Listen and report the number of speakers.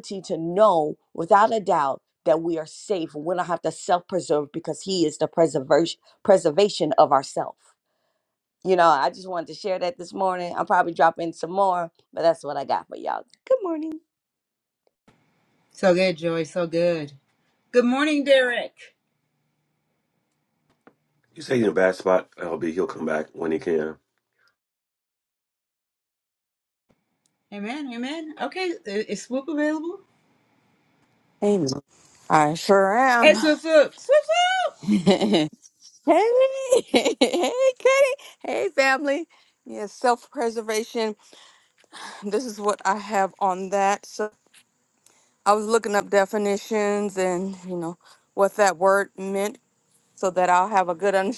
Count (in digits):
4